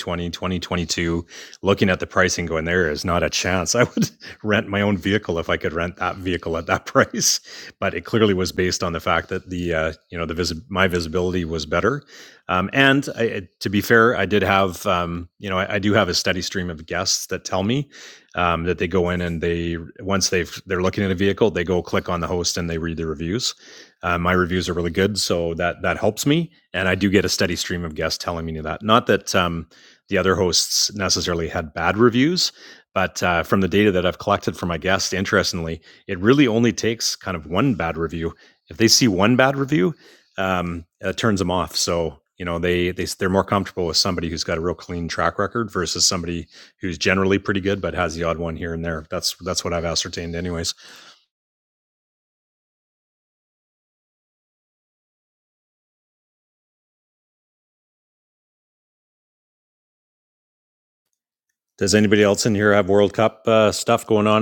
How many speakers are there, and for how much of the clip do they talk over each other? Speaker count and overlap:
one, no overlap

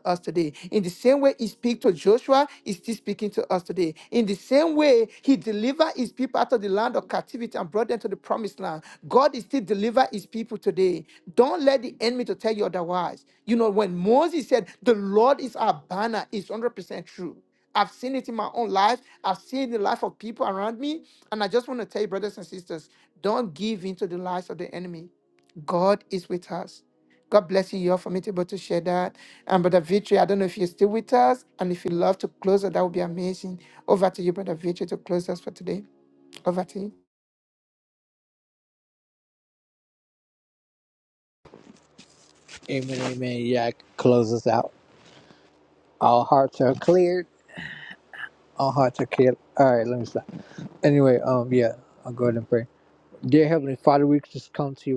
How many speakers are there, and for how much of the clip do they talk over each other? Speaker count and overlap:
two, no overlap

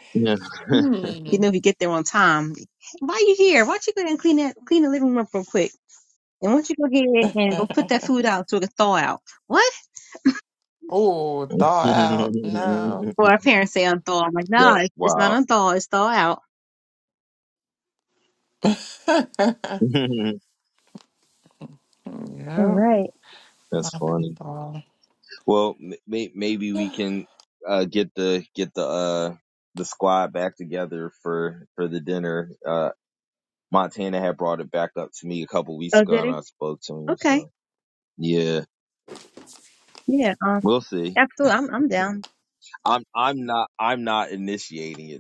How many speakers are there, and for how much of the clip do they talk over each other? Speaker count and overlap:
three, about 5%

